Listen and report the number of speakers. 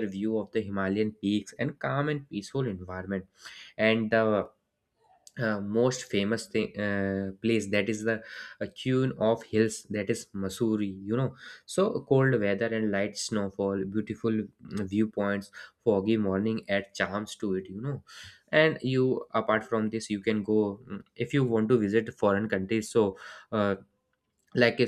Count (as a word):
one